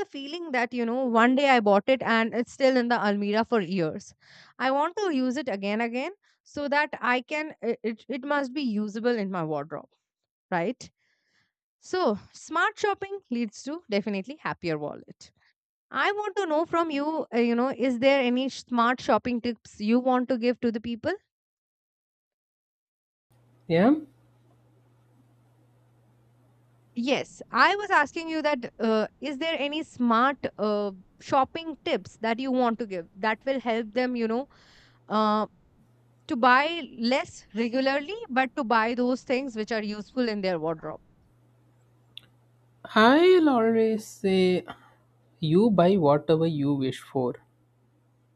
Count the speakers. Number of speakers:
2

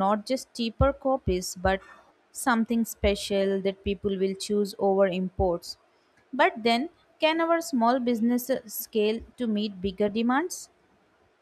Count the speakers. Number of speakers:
1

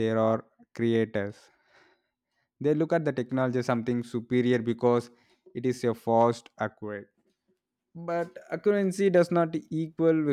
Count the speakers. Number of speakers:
1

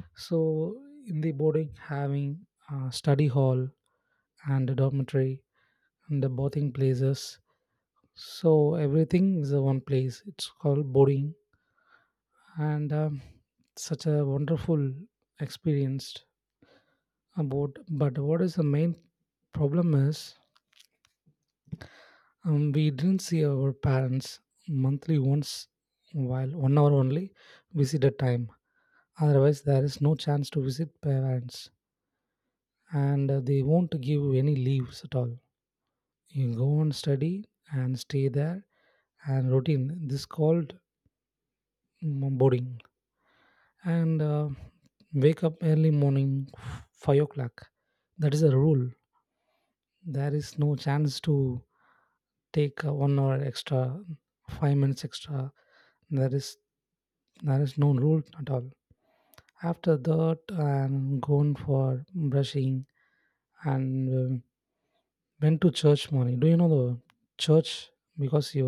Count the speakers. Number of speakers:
1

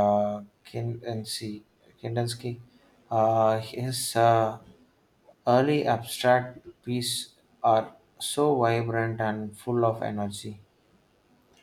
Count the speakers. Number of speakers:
1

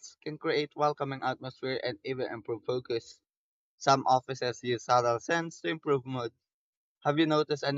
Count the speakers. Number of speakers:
1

